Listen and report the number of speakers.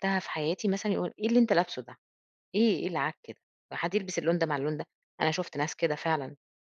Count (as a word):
one